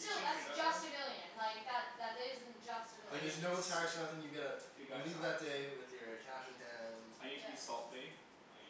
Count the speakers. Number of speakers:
three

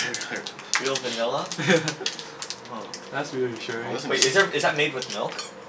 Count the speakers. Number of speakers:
three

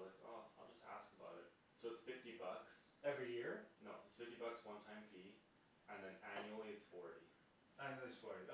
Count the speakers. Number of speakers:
two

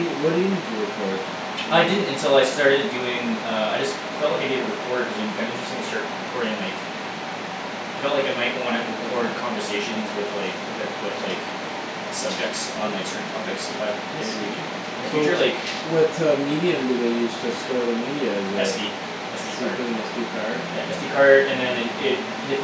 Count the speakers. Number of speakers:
two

